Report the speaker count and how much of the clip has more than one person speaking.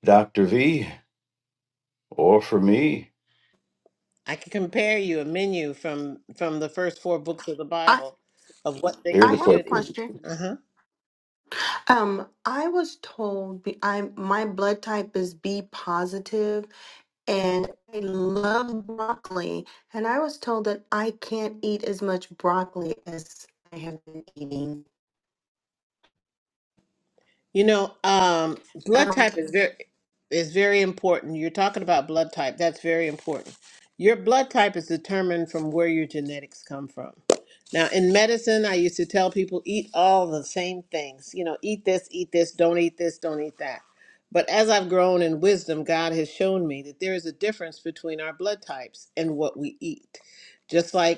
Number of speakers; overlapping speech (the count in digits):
3, about 3%